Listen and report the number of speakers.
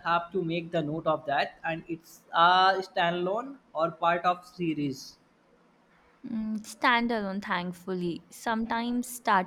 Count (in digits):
2